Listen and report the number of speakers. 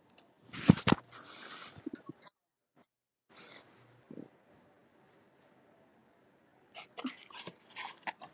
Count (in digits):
0